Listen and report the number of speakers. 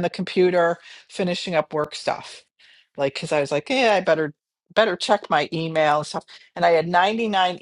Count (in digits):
1